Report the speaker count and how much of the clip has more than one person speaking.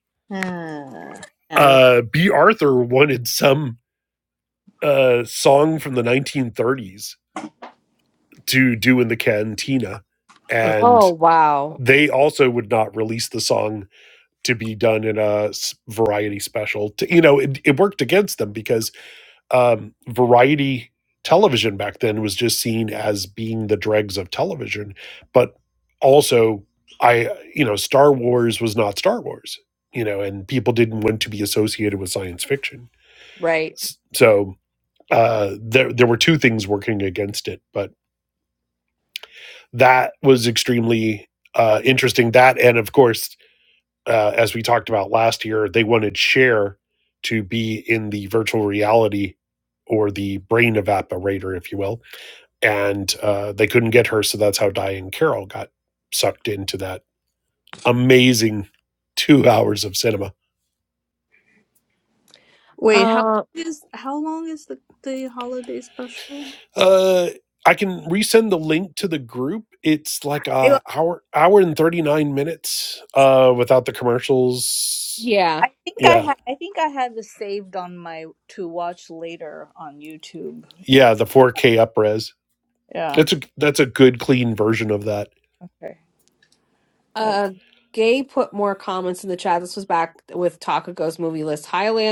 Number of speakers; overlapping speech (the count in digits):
3, about 2%